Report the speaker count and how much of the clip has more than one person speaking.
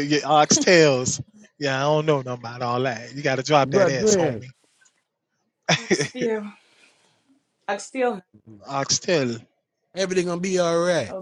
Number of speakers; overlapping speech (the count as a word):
three, about 7%